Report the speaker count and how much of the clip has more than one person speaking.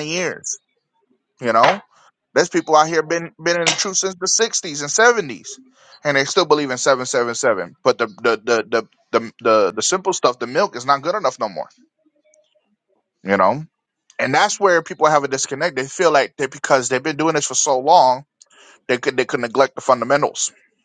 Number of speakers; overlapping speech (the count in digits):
1, no overlap